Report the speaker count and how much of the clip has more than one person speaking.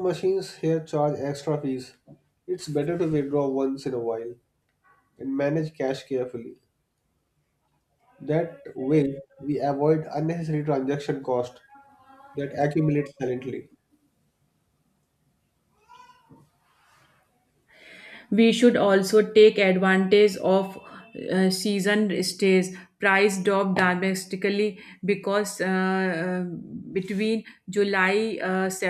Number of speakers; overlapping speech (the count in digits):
2, no overlap